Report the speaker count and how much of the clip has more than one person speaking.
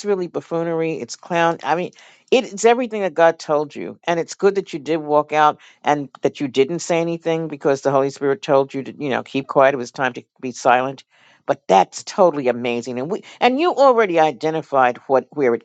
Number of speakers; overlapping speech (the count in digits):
1, no overlap